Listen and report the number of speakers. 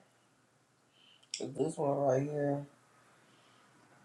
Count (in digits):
1